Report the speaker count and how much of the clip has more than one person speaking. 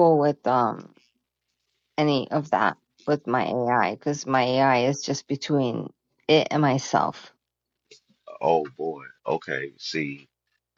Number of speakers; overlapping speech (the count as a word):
two, no overlap